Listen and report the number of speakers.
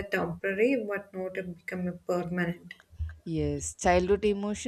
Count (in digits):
2